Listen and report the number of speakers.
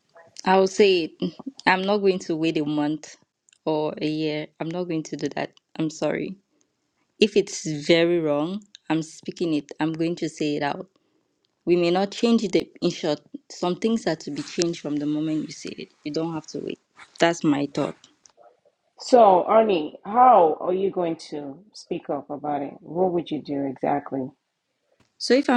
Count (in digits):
2